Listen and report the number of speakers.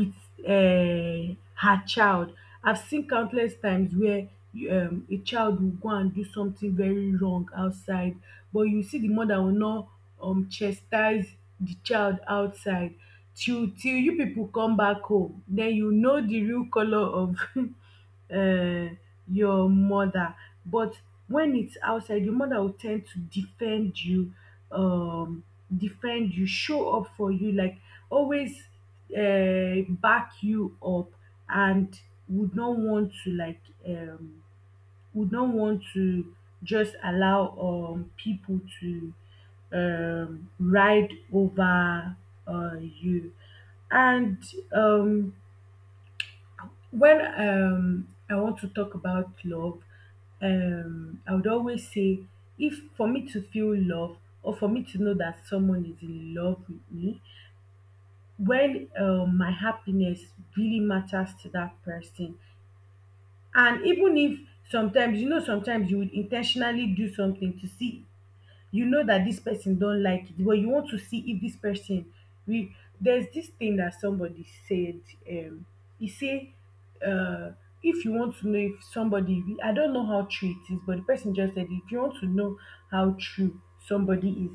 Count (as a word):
one